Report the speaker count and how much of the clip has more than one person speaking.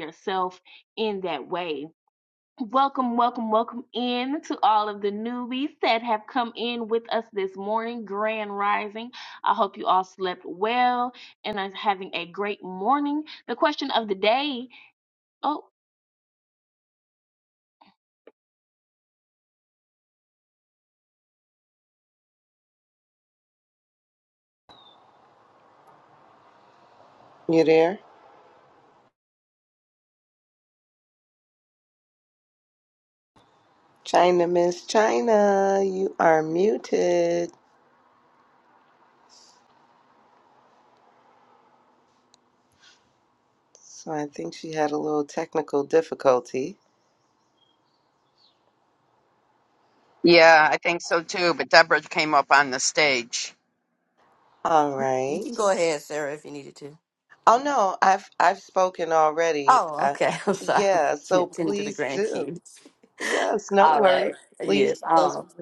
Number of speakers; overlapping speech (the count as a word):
four, about 6%